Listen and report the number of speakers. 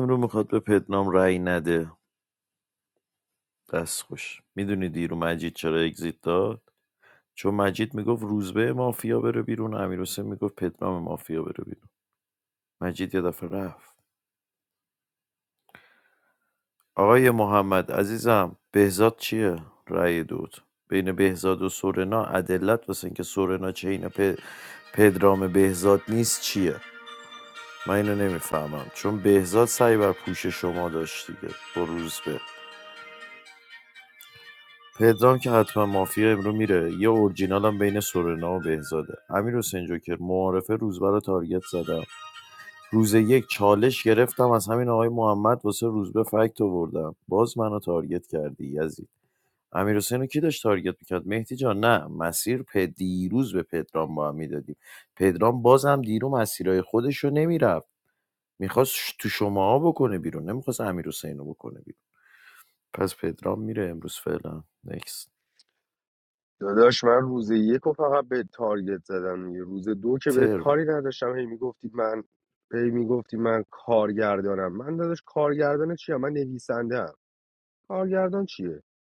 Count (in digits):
2